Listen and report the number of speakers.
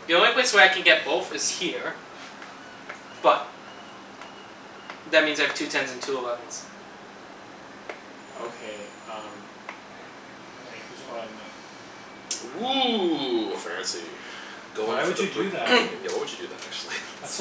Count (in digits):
3